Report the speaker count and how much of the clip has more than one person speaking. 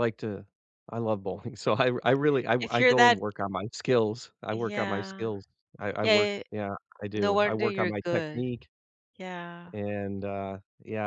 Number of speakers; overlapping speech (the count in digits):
2, about 27%